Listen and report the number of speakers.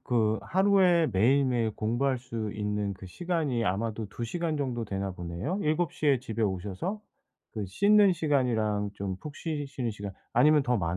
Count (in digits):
1